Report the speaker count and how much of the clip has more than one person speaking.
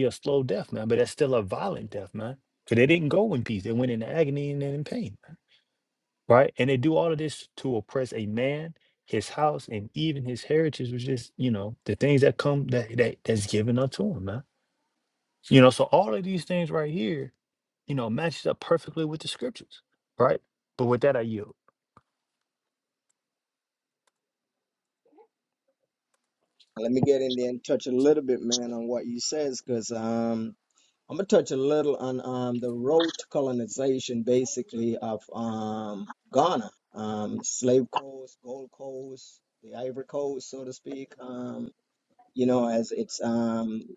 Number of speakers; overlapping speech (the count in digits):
2, no overlap